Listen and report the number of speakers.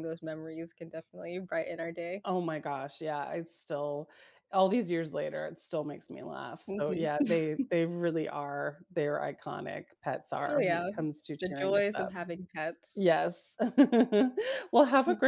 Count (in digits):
2